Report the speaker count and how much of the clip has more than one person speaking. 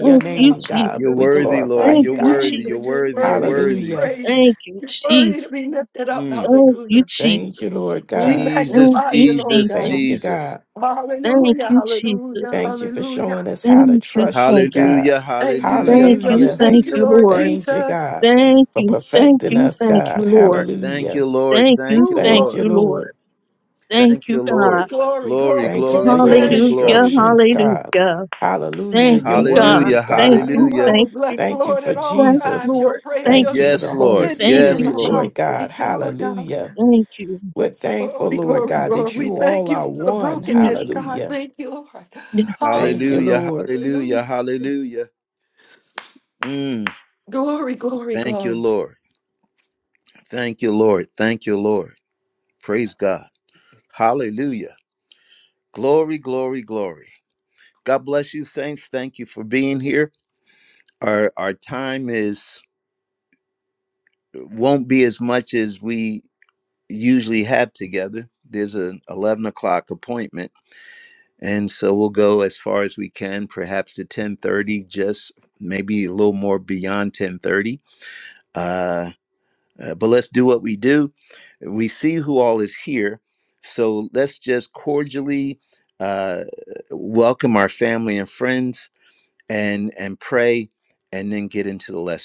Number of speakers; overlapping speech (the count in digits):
4, about 38%